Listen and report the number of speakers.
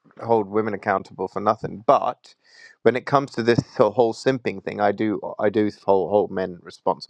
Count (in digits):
1